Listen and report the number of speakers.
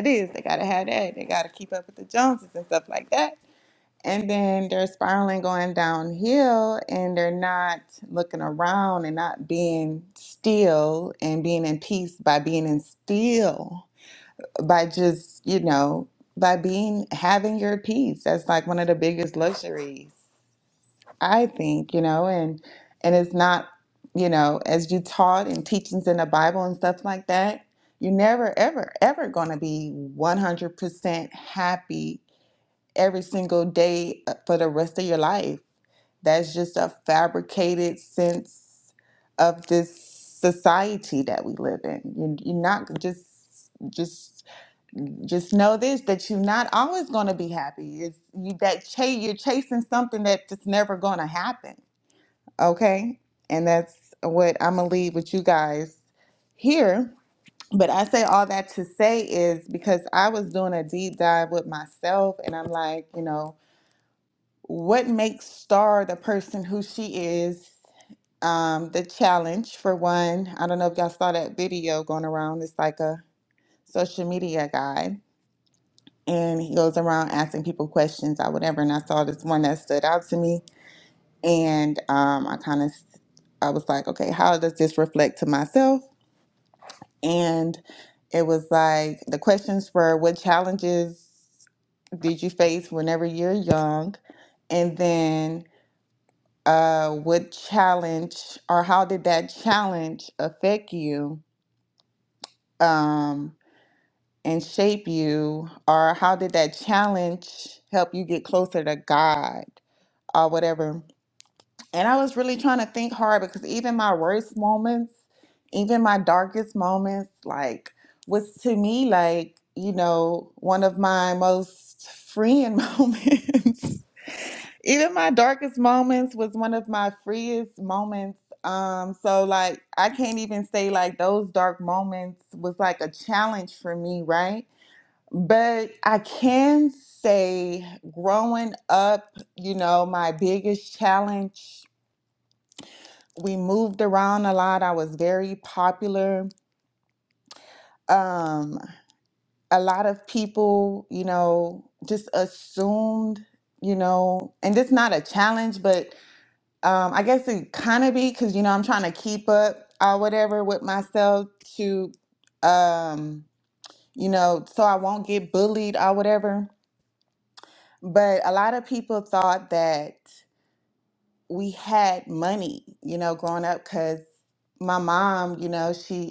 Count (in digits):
1